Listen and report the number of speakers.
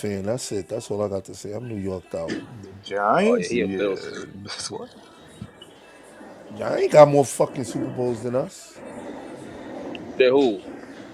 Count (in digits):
3